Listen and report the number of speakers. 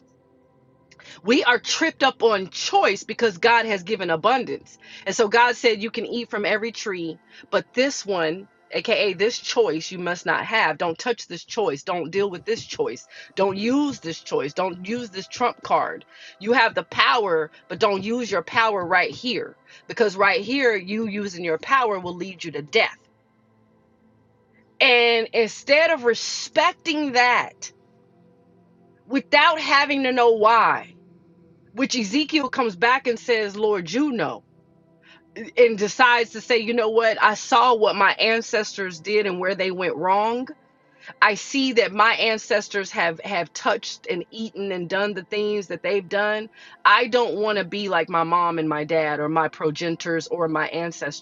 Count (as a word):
one